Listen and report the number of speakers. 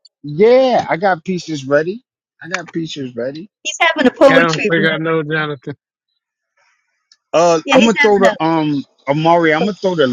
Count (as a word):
three